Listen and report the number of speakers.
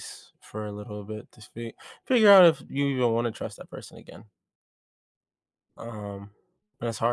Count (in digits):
1